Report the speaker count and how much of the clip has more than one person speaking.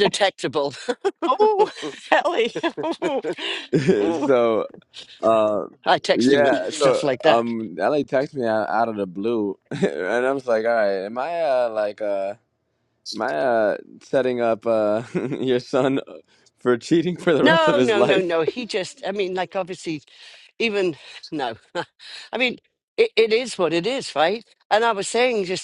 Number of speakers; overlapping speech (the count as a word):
three, about 9%